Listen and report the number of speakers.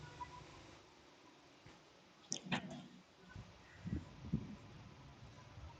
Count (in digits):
0